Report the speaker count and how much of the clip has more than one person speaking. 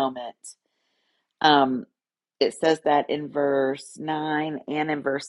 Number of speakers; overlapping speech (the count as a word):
one, no overlap